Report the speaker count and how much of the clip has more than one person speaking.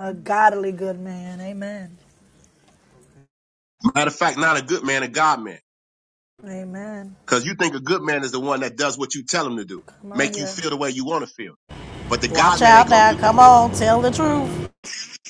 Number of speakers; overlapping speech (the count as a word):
three, about 10%